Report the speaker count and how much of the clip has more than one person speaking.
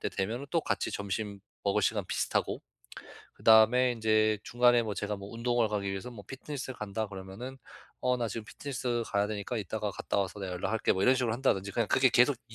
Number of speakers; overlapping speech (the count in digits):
1, no overlap